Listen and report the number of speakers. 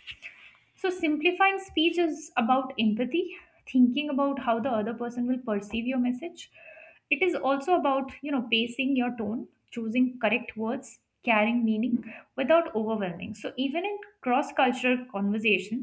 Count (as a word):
one